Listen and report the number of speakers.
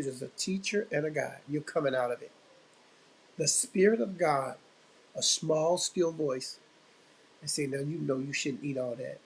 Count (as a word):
one